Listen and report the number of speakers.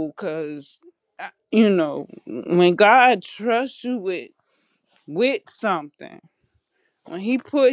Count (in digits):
1